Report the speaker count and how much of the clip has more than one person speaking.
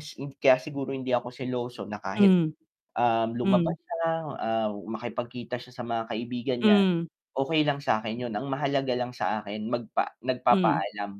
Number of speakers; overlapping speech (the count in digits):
2, about 9%